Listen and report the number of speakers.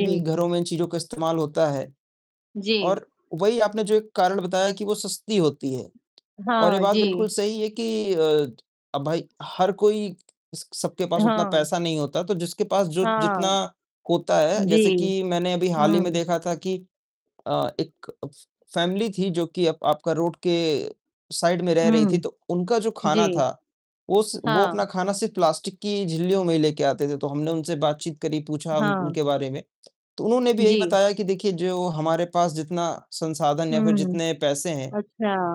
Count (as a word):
two